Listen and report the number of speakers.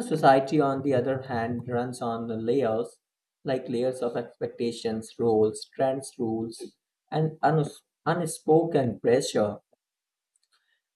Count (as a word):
one